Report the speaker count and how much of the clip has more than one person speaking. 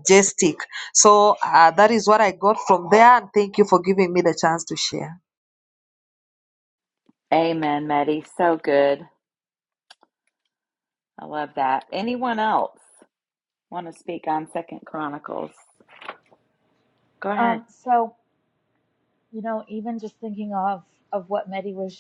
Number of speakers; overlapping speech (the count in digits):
3, about 1%